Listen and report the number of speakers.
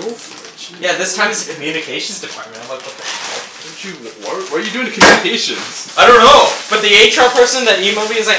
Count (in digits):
2